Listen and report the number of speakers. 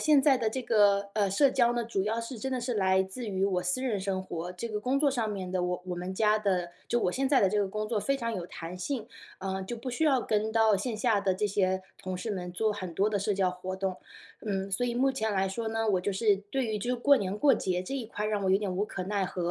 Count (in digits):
1